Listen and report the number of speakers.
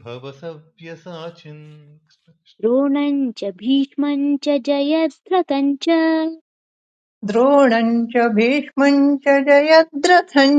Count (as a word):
three